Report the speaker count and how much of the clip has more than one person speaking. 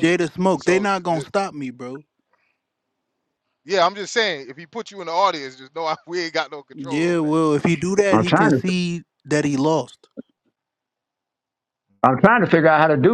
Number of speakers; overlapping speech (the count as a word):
three, about 14%